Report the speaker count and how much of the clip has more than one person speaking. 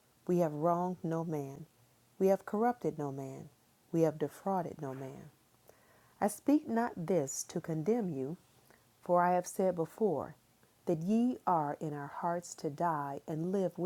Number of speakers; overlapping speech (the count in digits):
1, no overlap